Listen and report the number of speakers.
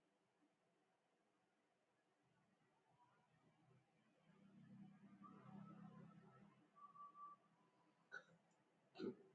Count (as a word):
zero